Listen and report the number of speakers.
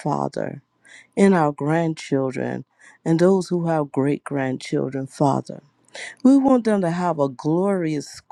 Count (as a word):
one